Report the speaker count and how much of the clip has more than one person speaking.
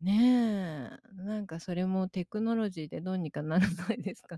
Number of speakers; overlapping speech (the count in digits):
1, no overlap